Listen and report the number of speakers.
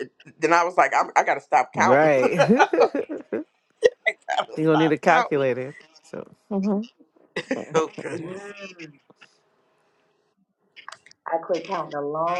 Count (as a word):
three